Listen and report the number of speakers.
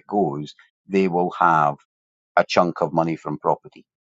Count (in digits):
1